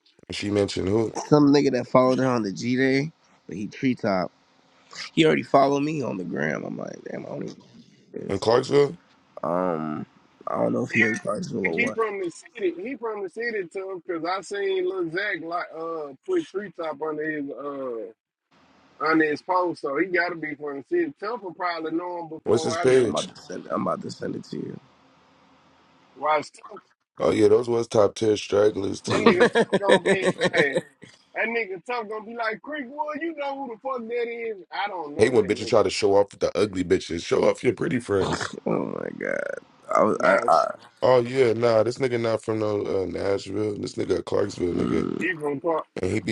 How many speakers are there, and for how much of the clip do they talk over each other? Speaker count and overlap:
three, about 6%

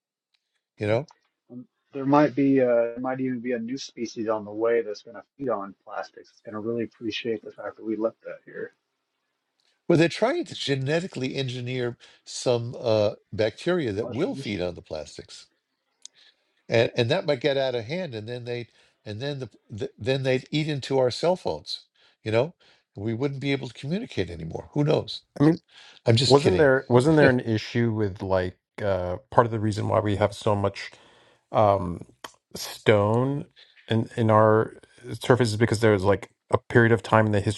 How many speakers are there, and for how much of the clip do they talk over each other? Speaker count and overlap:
three, about 3%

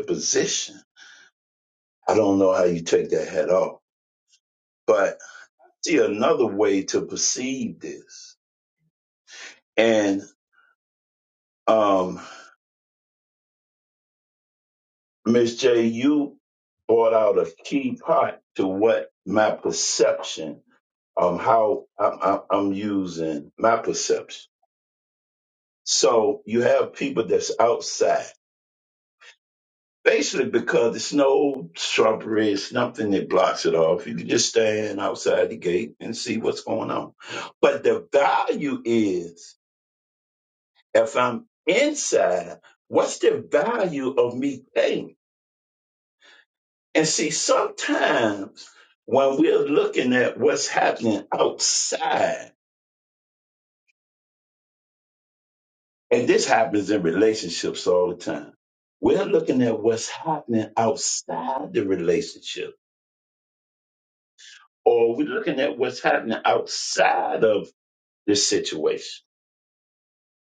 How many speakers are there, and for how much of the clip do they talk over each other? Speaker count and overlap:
one, no overlap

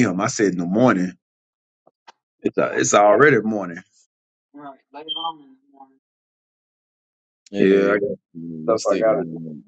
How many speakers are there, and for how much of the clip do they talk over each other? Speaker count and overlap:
three, about 14%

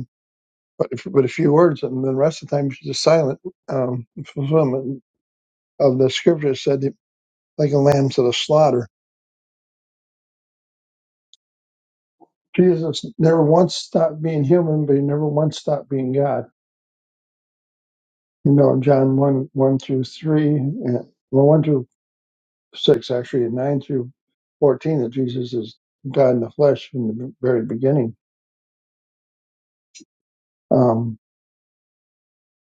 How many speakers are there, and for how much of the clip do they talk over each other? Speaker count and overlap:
one, no overlap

